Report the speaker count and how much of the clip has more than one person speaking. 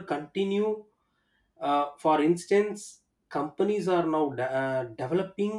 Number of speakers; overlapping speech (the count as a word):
one, no overlap